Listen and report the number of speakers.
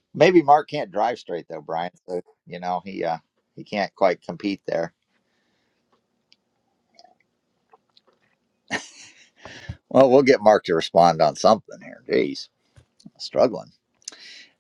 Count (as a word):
one